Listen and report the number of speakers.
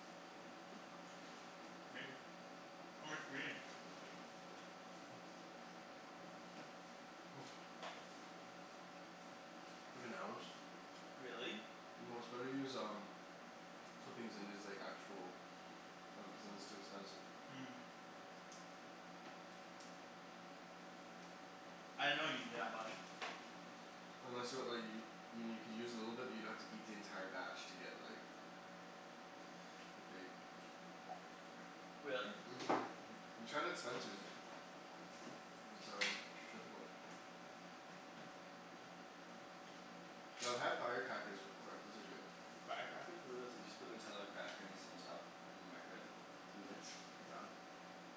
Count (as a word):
two